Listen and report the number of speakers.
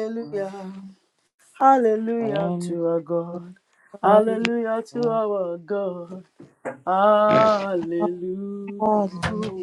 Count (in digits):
2